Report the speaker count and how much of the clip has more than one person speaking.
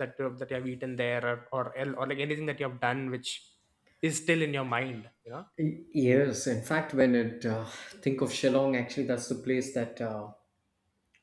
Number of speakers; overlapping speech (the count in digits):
2, no overlap